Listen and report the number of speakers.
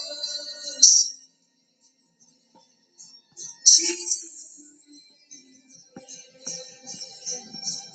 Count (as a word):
zero